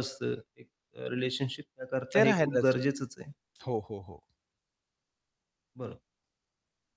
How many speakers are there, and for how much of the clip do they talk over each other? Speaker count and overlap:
2, about 9%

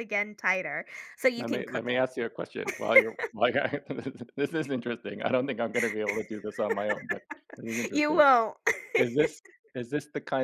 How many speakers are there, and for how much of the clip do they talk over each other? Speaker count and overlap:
2, about 9%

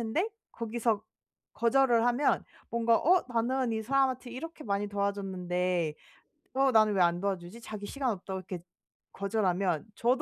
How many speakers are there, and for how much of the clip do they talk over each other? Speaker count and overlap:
1, no overlap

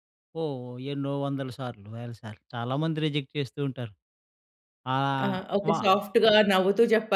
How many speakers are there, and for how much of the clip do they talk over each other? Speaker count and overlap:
2, about 9%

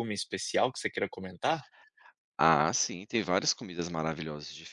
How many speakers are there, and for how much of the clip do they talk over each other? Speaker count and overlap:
2, no overlap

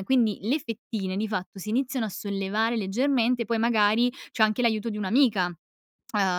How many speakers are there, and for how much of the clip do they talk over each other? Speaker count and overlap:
1, no overlap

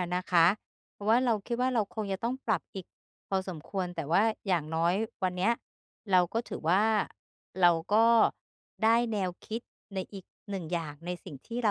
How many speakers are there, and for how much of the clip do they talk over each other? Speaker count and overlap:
1, no overlap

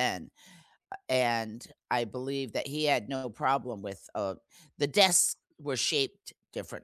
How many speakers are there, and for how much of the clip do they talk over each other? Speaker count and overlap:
1, no overlap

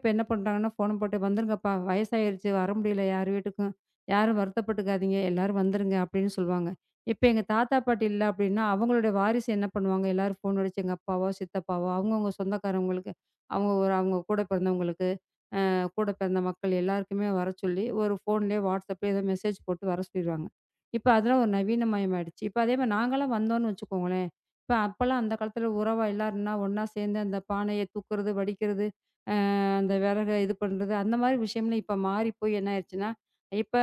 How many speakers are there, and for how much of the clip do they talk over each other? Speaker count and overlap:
1, no overlap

